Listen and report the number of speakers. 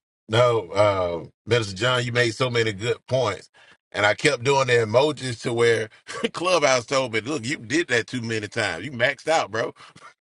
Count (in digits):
1